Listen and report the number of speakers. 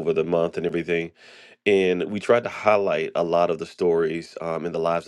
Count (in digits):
1